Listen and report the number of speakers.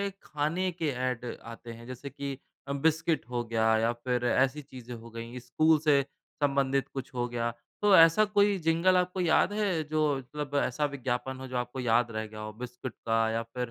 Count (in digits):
1